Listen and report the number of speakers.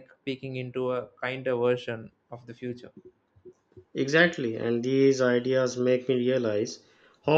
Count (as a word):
two